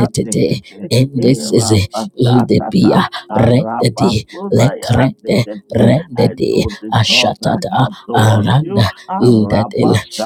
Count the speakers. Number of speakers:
2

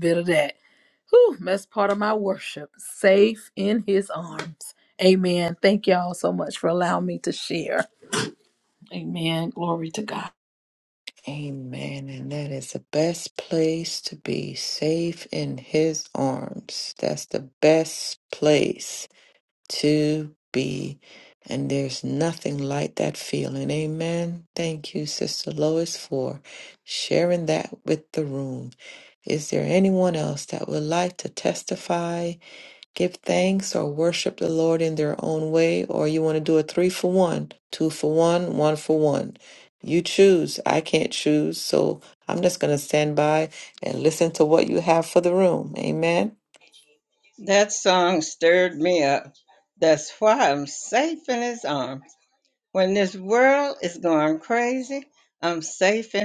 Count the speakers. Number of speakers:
3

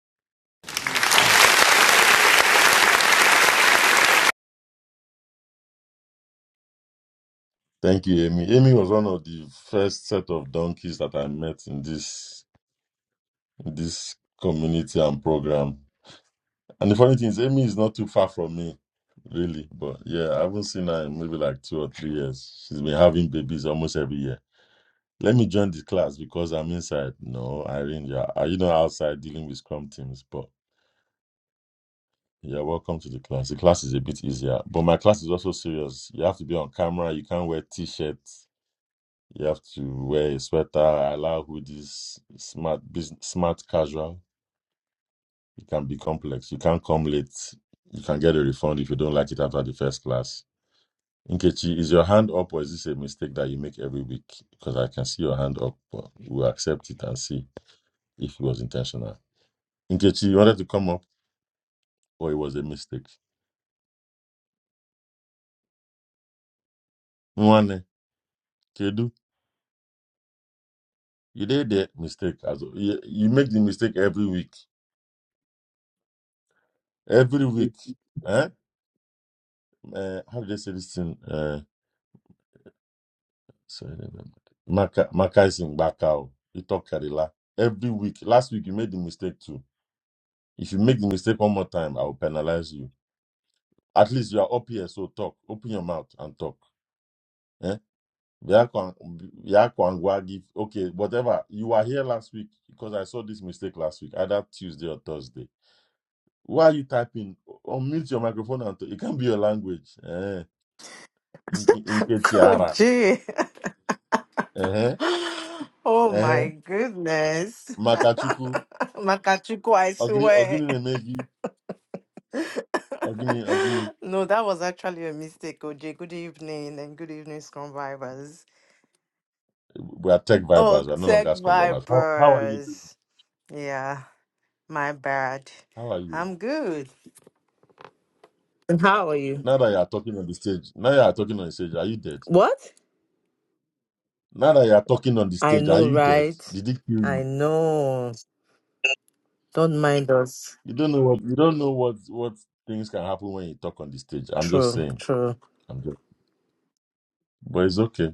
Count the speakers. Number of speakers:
2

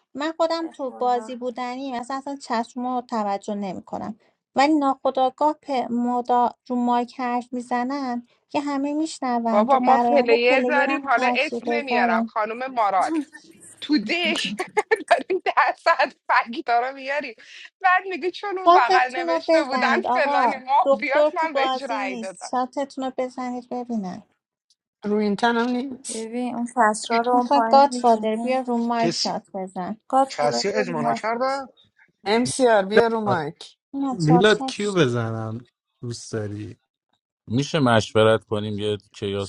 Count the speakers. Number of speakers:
7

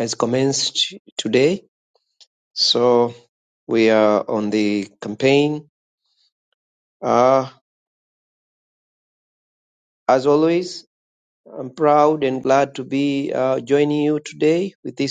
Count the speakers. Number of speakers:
1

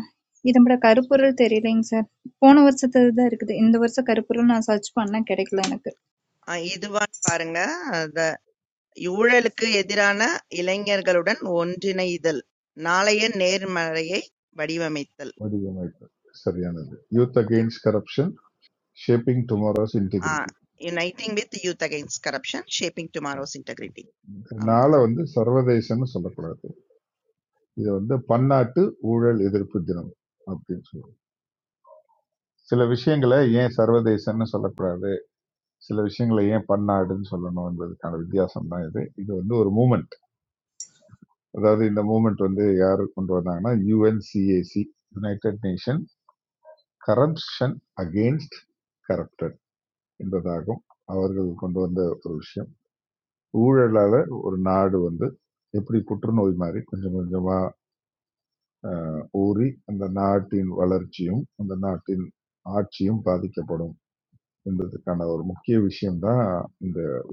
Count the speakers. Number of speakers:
3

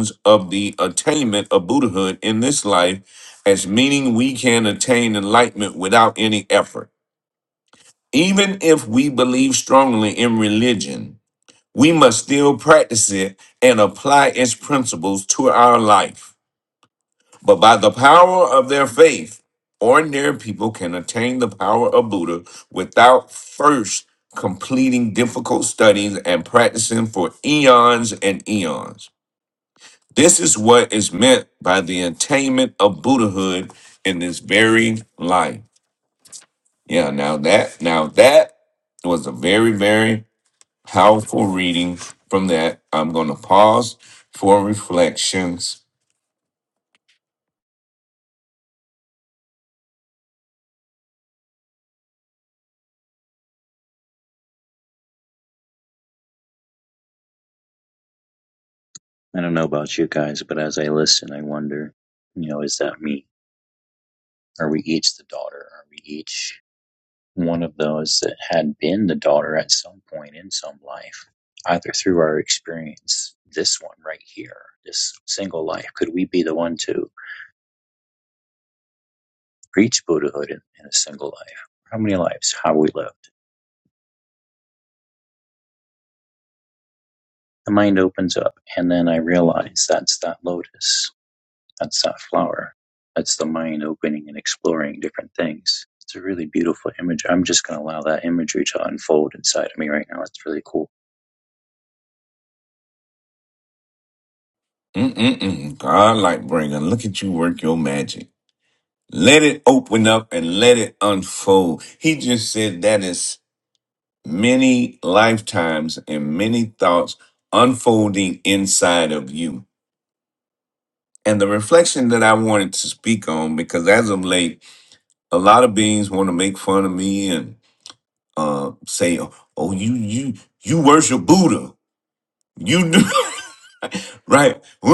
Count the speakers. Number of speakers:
2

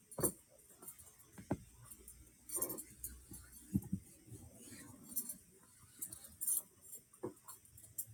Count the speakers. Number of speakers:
0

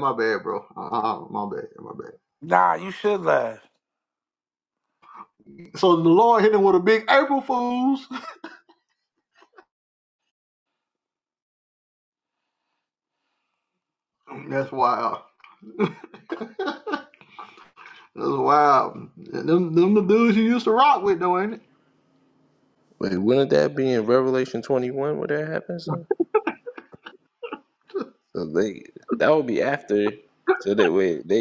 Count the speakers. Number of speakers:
3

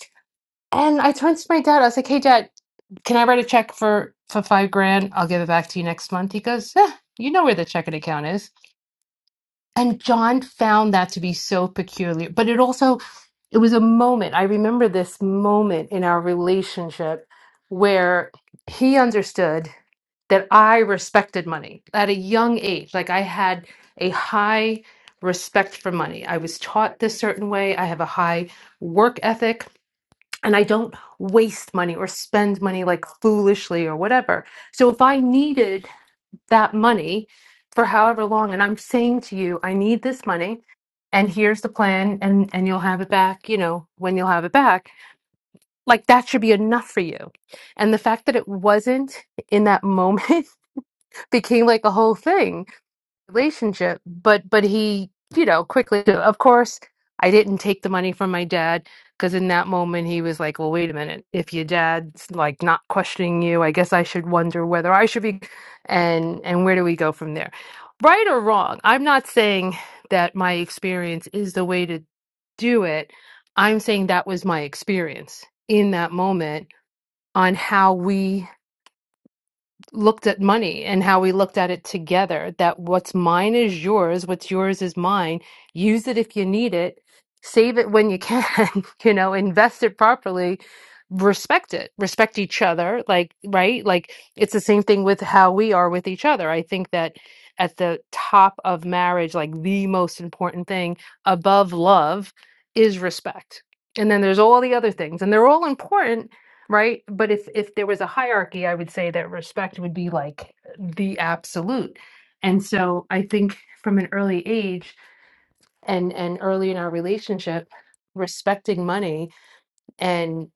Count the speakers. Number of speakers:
1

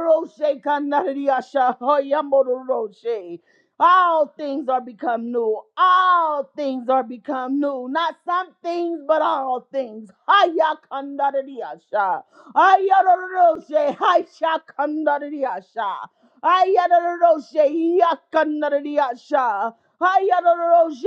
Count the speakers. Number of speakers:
1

